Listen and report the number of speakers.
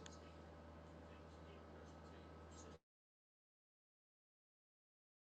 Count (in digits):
0